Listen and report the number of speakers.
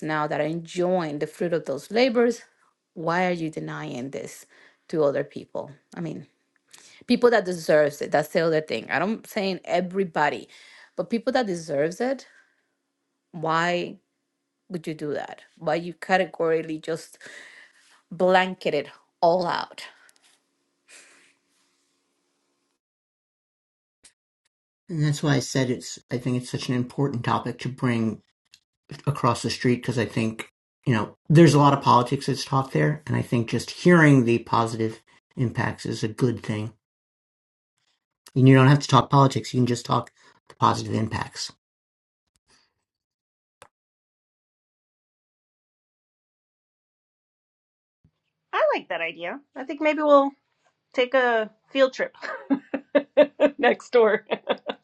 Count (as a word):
three